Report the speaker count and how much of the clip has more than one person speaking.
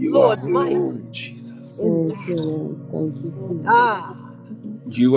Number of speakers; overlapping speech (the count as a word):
three, about 16%